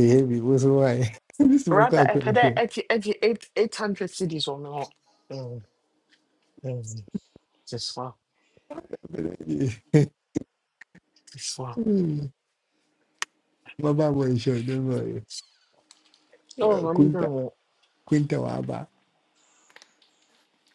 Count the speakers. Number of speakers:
two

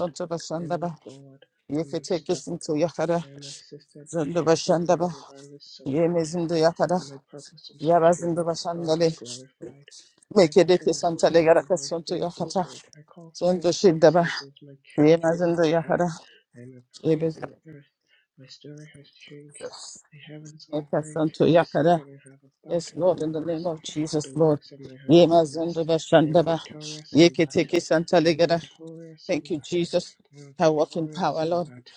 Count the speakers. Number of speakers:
two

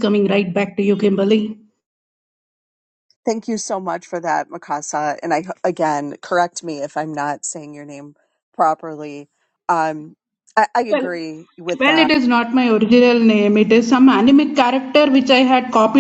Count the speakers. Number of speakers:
two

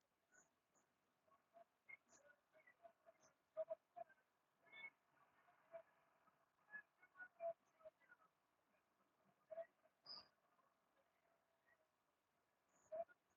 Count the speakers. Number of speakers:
zero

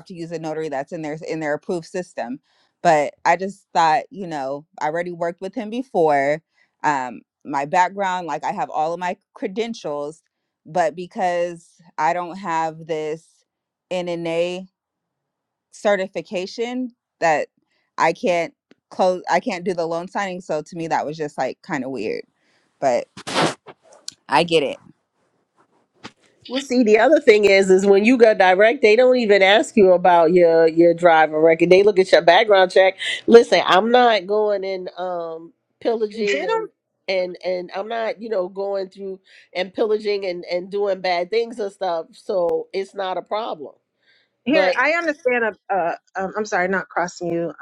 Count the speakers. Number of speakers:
three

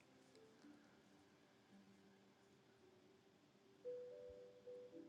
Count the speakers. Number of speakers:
zero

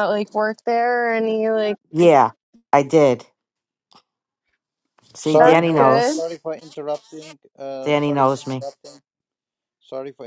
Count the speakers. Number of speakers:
three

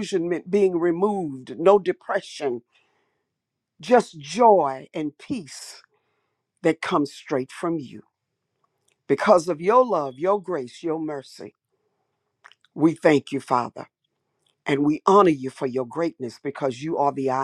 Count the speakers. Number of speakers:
one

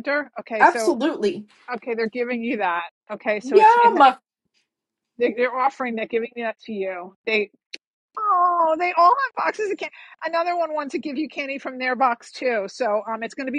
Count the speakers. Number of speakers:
two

